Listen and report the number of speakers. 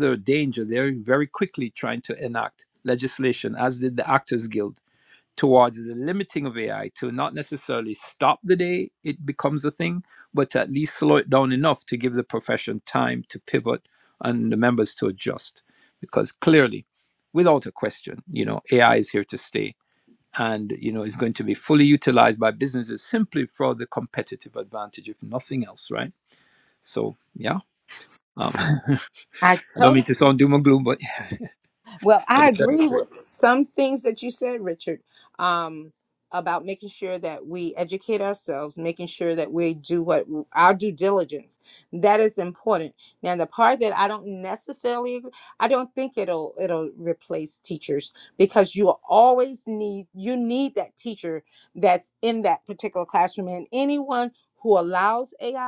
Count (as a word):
two